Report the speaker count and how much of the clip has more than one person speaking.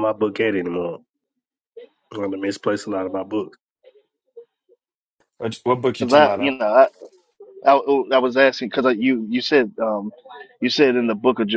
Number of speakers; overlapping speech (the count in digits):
3, about 4%